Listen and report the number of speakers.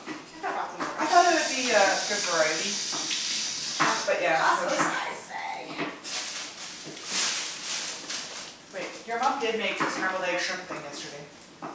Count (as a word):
two